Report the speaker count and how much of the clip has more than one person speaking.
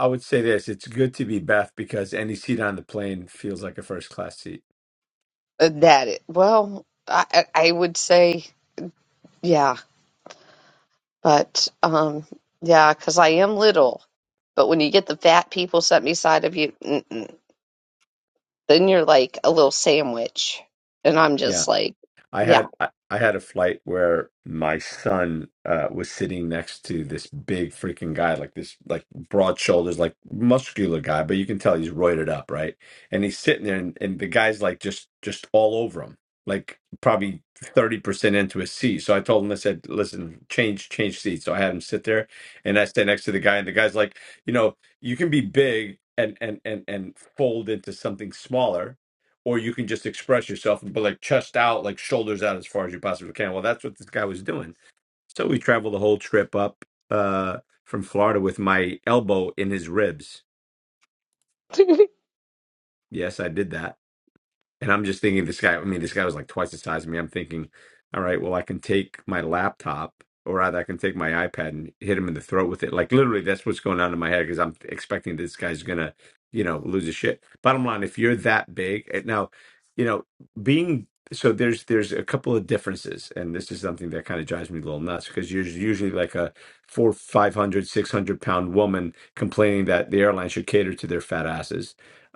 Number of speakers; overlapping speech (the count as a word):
two, about 1%